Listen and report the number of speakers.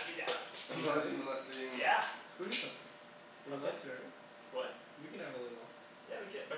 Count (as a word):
three